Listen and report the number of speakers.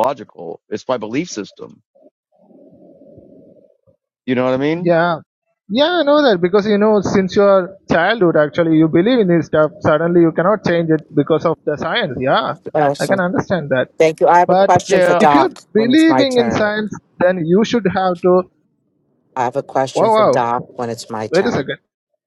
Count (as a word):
three